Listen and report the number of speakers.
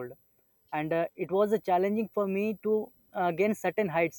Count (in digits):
1